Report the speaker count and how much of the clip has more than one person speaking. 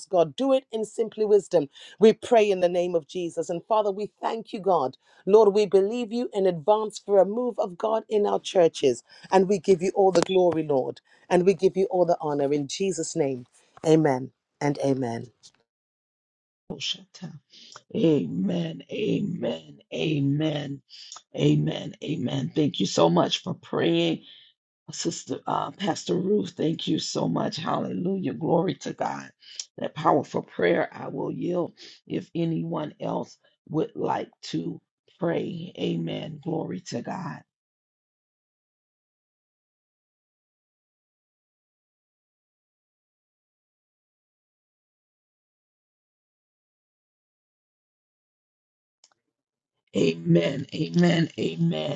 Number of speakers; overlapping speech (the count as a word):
two, no overlap